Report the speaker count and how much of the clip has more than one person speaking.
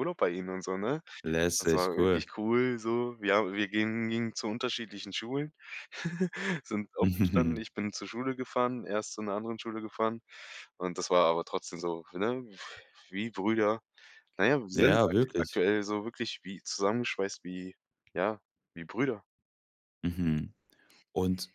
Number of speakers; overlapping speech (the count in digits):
2, about 5%